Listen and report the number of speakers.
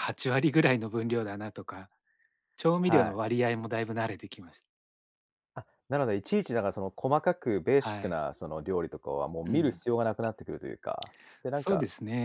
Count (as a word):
two